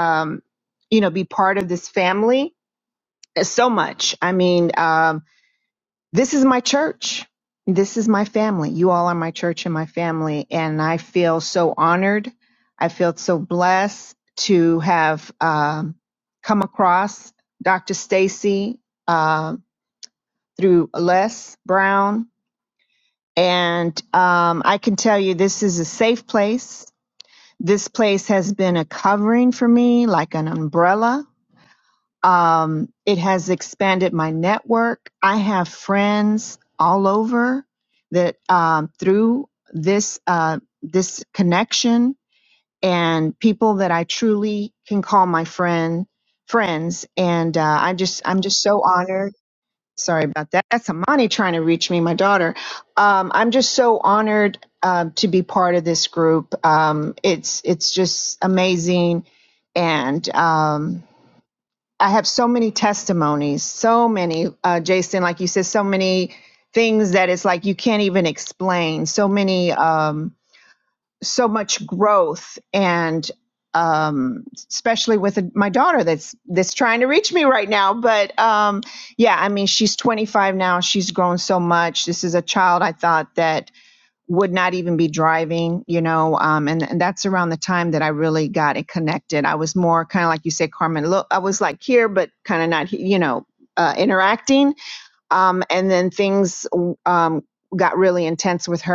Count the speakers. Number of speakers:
1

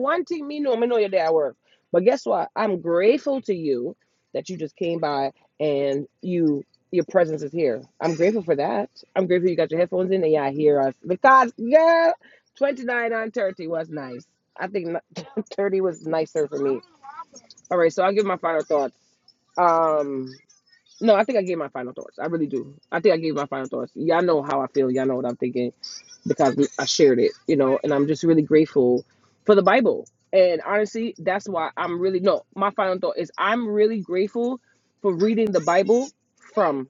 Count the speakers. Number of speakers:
1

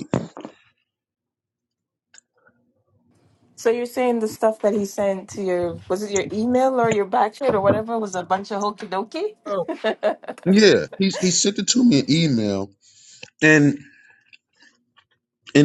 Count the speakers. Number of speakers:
2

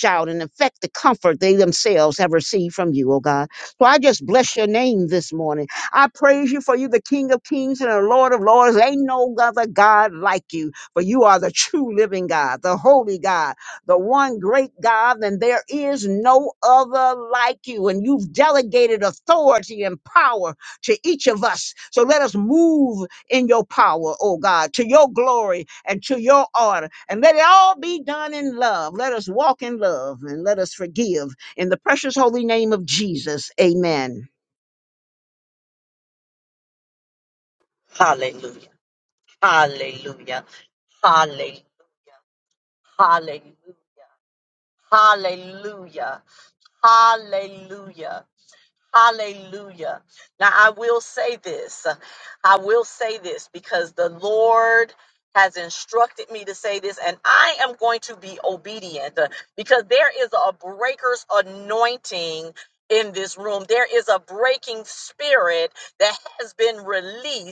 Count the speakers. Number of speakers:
2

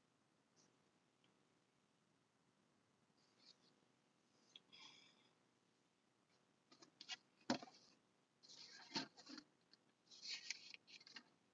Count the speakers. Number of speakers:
0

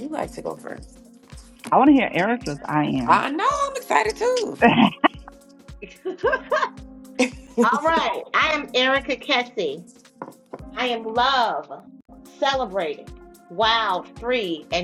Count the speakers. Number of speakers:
3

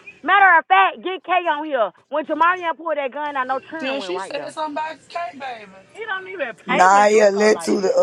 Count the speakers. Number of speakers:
3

